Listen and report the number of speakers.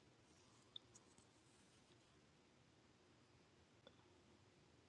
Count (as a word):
zero